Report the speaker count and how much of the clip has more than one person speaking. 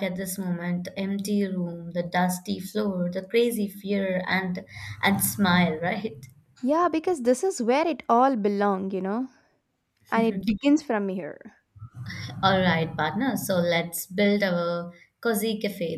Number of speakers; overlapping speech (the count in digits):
2, no overlap